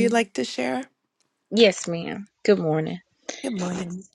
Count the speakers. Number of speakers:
2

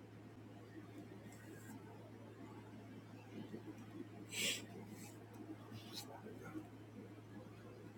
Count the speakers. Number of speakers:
0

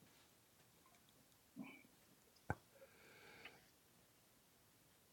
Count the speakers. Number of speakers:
0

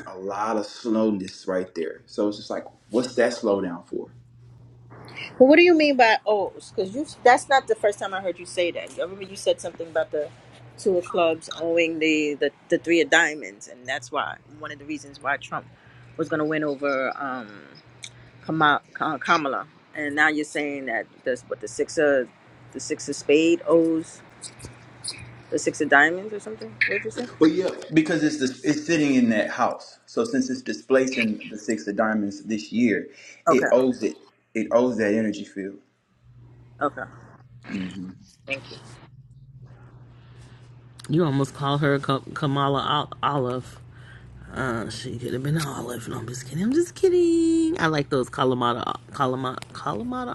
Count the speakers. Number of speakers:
3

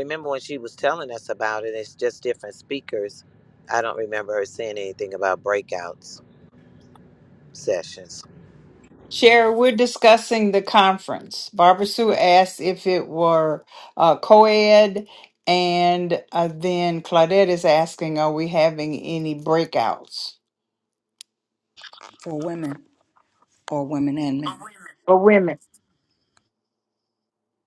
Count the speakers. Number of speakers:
3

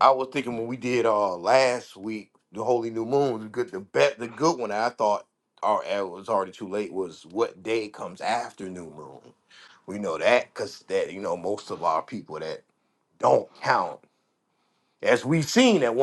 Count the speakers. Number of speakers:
1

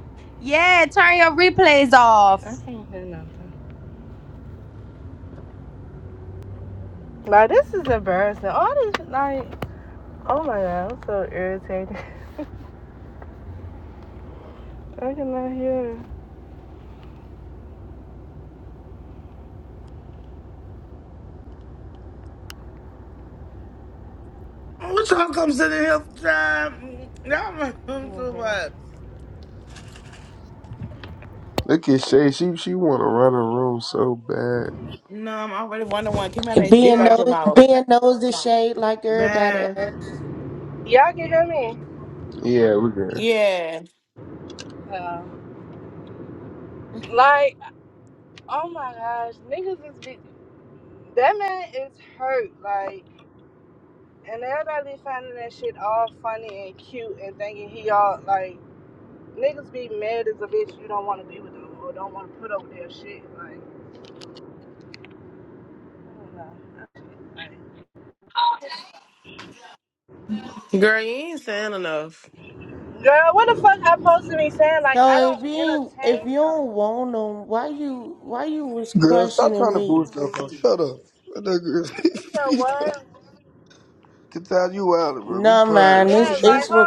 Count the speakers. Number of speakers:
7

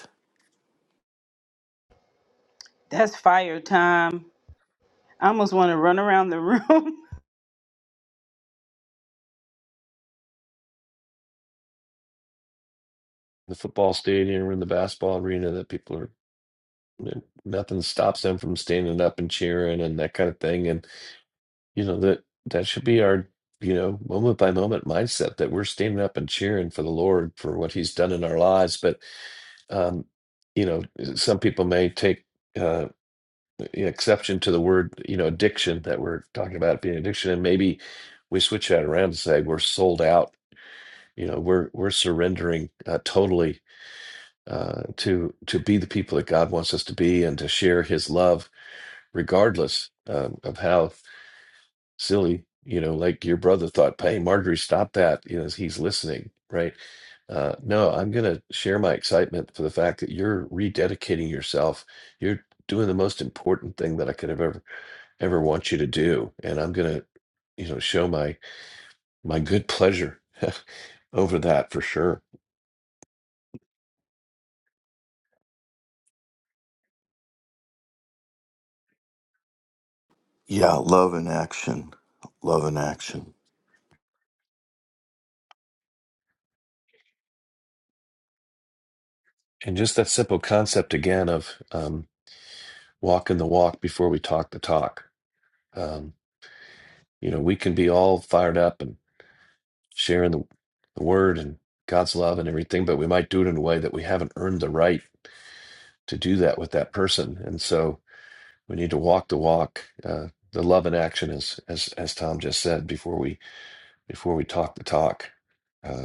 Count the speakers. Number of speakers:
3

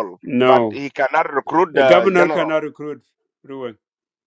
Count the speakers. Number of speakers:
2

